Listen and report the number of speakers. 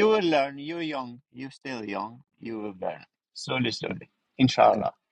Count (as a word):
one